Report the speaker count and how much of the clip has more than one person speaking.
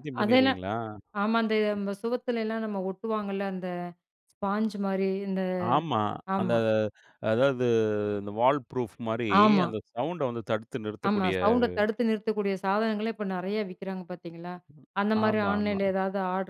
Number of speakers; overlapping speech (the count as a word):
two, about 12%